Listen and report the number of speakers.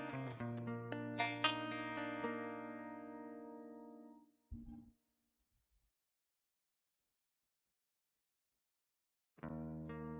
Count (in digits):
0